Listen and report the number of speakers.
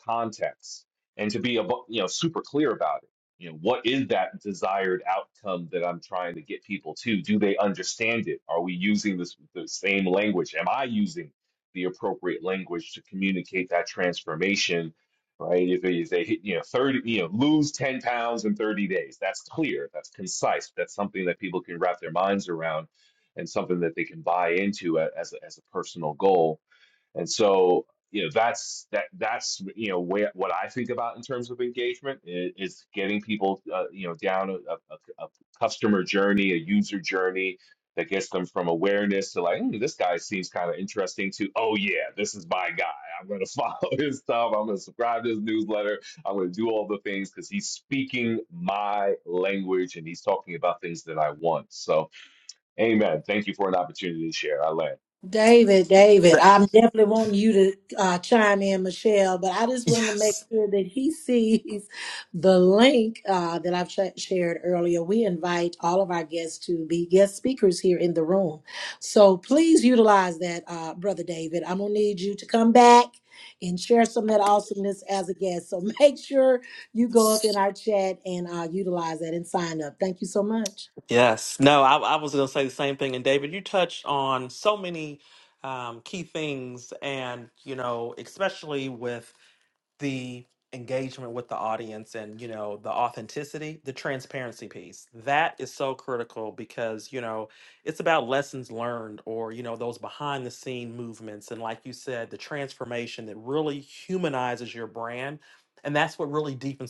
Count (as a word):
three